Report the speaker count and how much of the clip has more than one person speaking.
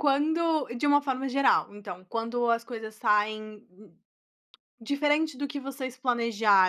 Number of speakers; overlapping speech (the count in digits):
1, no overlap